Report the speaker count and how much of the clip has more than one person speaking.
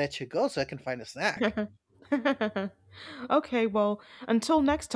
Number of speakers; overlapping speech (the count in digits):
2, no overlap